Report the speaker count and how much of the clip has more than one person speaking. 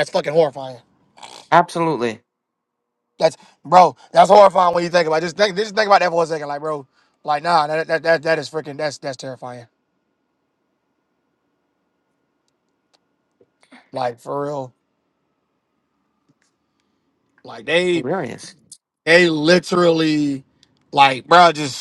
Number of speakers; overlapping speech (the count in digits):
2, under 1%